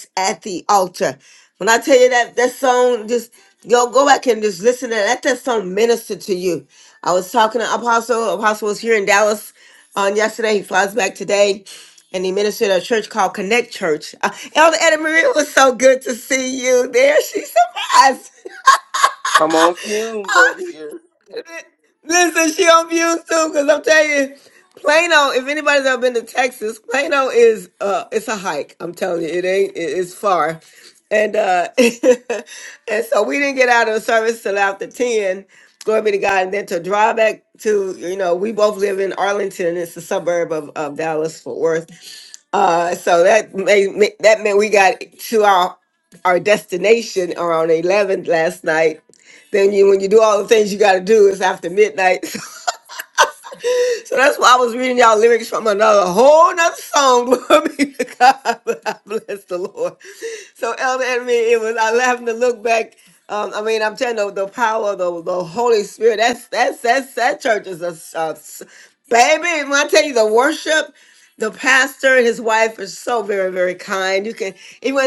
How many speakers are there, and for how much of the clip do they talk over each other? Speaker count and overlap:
two, no overlap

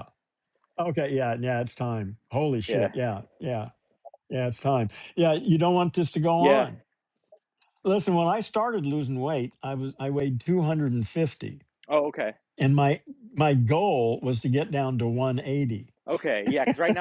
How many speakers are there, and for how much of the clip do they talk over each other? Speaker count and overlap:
two, about 3%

